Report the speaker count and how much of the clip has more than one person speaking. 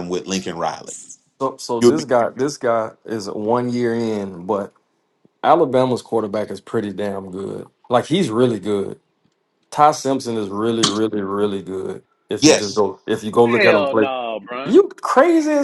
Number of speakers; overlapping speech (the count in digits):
3, about 8%